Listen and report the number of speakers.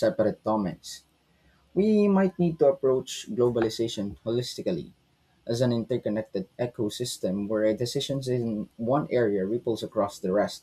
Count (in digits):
1